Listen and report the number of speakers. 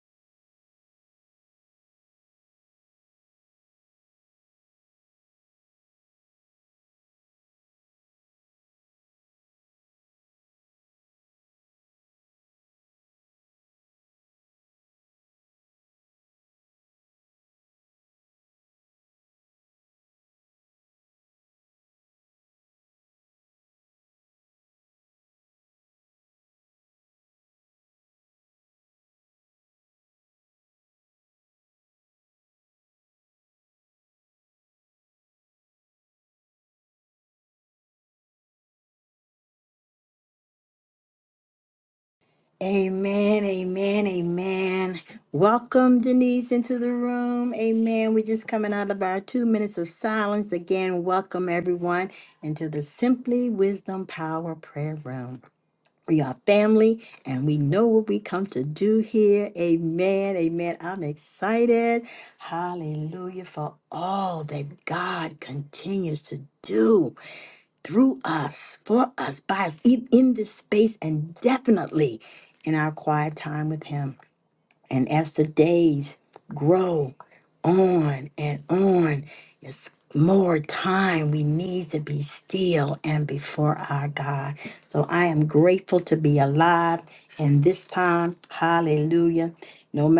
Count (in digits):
1